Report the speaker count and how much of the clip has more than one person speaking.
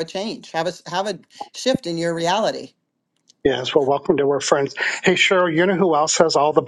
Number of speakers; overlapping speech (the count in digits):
2, no overlap